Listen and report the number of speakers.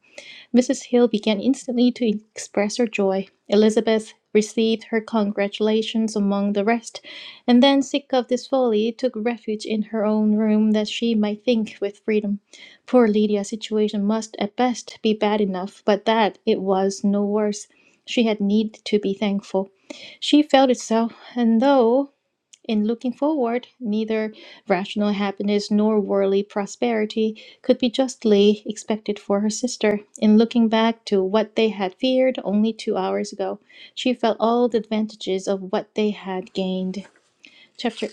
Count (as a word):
one